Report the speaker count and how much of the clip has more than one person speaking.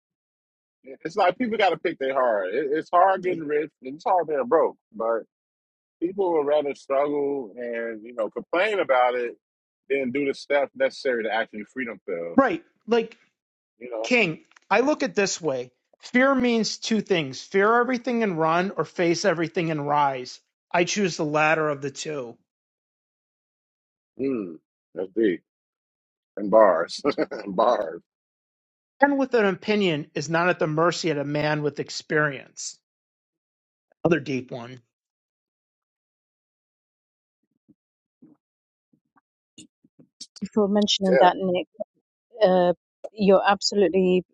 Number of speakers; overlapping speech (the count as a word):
three, about 1%